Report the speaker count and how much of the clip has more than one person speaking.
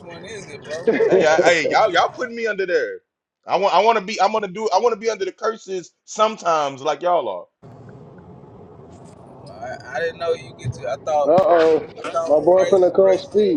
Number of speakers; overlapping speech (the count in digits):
3, about 12%